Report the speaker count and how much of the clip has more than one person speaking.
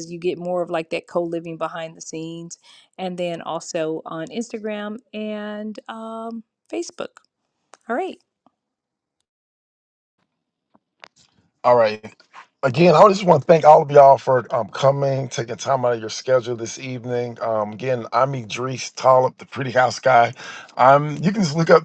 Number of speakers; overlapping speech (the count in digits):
2, no overlap